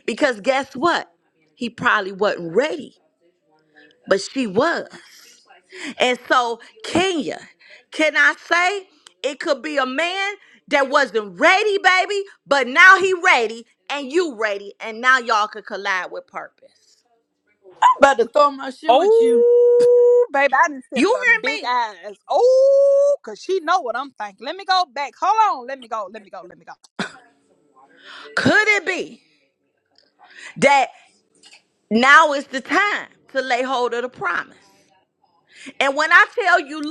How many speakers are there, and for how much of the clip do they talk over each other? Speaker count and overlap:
3, about 3%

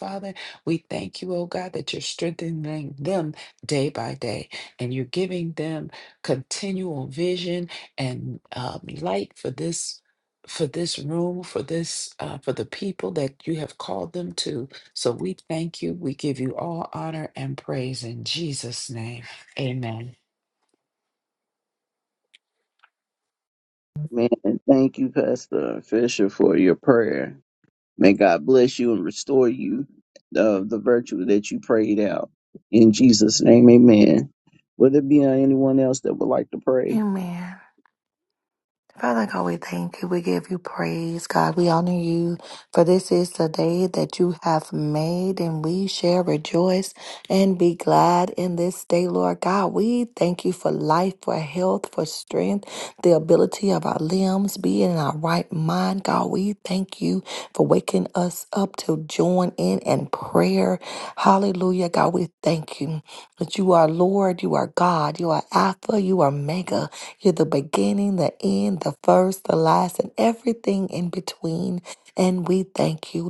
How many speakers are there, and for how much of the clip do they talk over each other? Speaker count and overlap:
3, under 1%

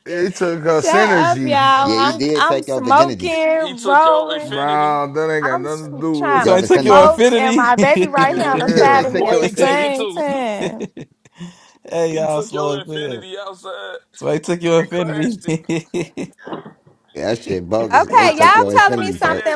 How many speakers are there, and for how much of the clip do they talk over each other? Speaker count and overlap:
5, about 60%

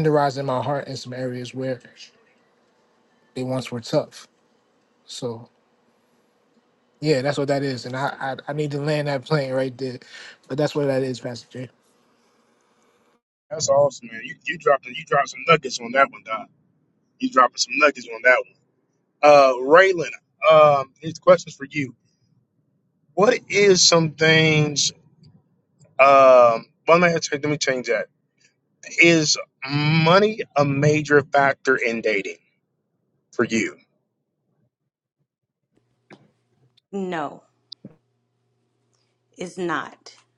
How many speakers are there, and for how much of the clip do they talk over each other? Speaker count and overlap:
3, no overlap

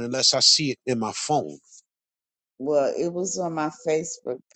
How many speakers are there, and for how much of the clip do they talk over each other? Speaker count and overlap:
2, no overlap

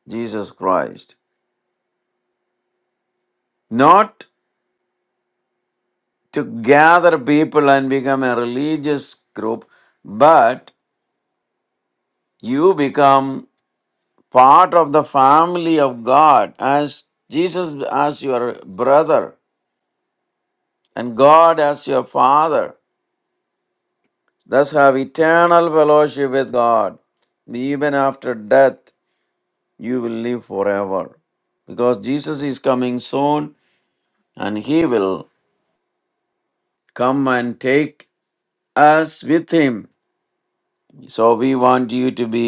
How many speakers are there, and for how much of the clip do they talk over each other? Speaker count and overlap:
1, no overlap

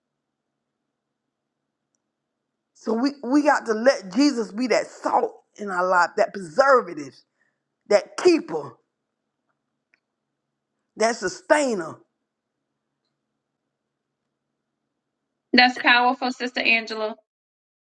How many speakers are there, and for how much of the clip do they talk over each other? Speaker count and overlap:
2, no overlap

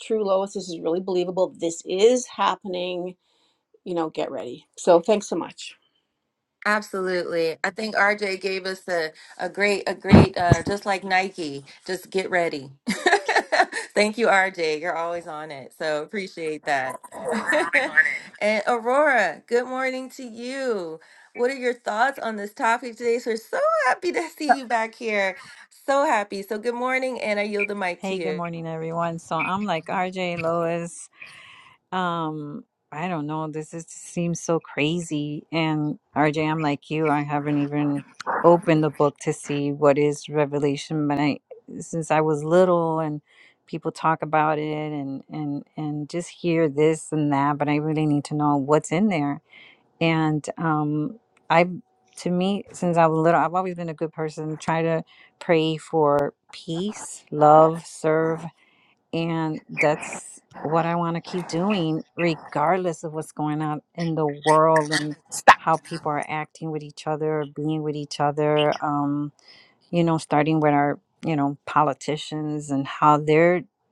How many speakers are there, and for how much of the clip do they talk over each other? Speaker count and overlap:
3, about 1%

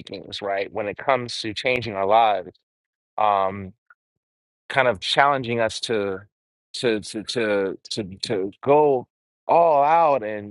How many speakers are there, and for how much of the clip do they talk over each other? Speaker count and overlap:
1, no overlap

